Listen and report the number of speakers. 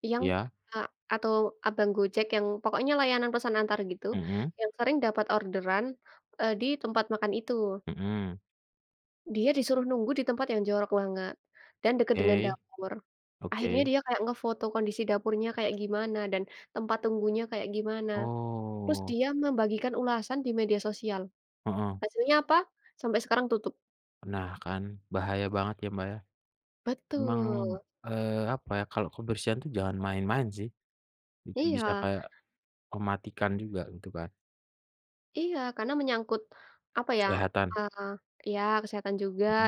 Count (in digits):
2